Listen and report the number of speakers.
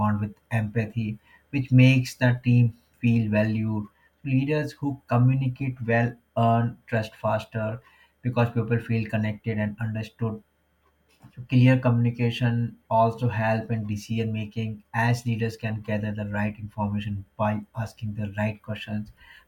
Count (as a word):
one